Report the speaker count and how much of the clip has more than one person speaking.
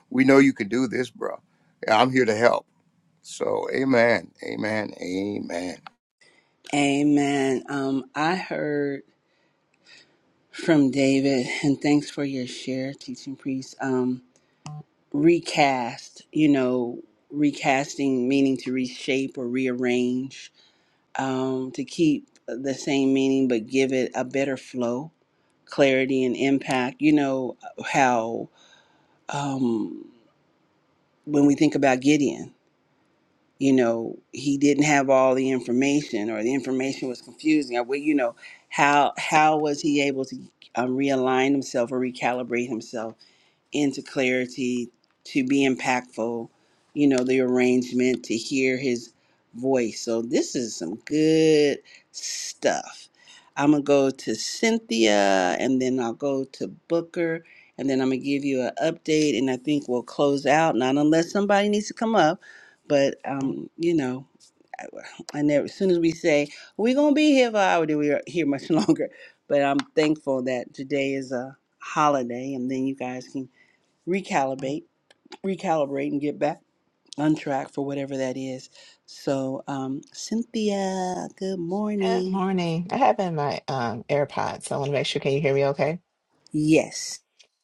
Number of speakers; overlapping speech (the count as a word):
three, under 1%